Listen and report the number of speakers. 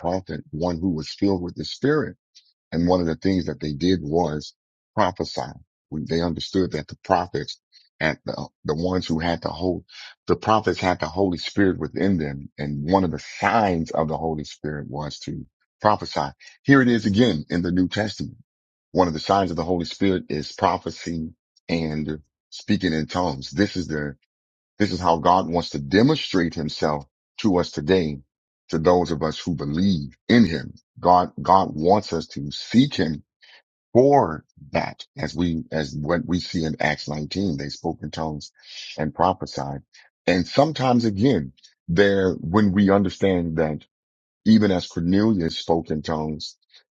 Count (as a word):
one